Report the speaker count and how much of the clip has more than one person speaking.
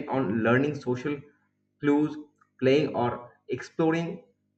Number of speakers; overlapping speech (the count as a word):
one, no overlap